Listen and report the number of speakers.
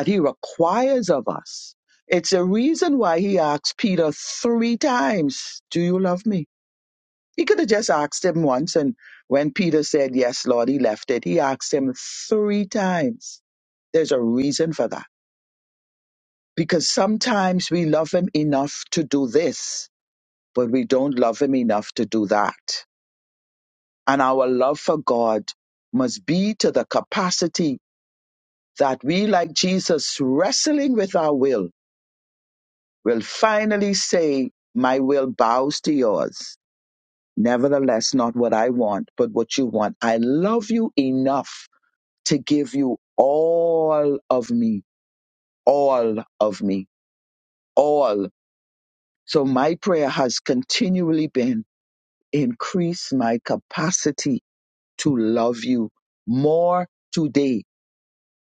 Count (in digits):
1